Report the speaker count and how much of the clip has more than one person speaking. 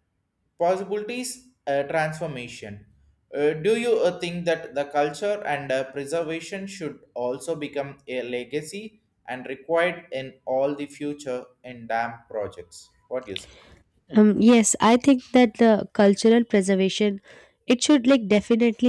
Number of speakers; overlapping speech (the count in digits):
2, no overlap